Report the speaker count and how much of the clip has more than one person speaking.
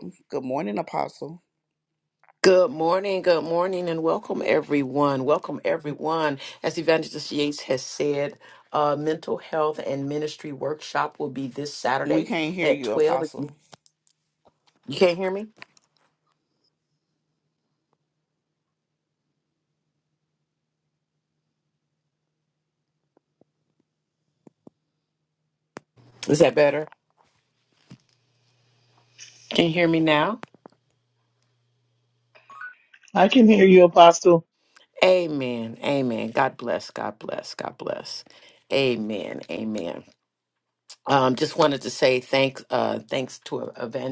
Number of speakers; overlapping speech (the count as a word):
three, about 2%